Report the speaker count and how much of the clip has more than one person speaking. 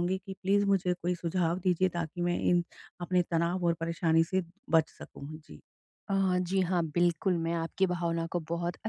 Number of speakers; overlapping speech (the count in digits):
2, no overlap